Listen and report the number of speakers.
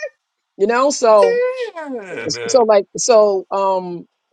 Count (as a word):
two